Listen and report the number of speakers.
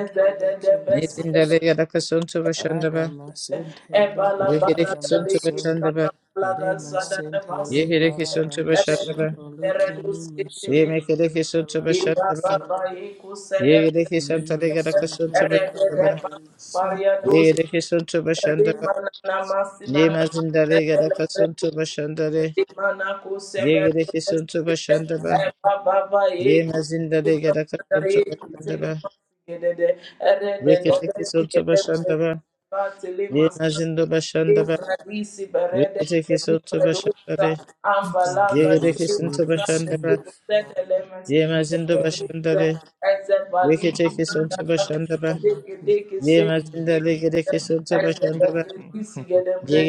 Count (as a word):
two